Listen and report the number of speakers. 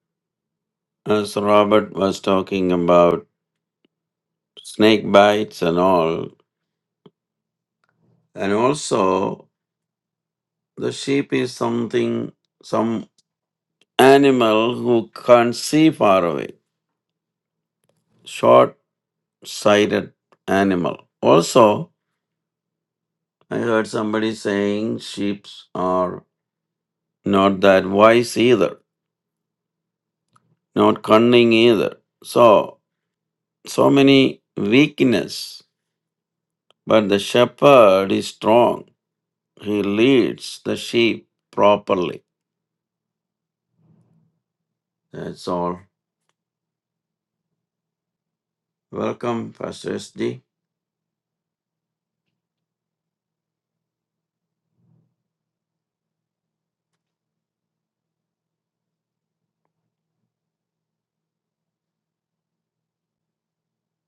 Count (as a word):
one